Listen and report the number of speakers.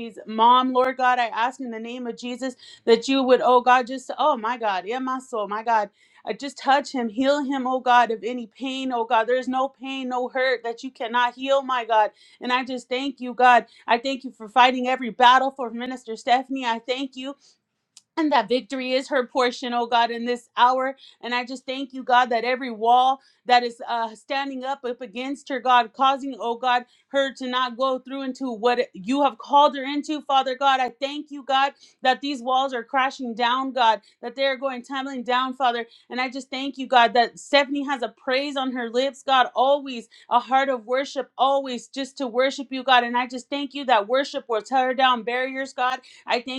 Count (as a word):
one